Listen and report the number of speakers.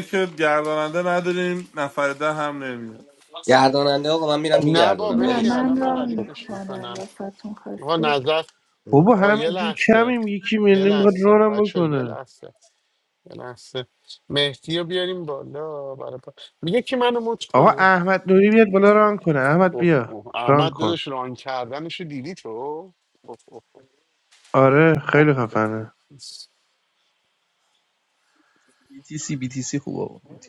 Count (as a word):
six